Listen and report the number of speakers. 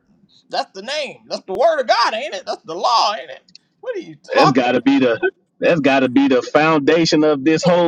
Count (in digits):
2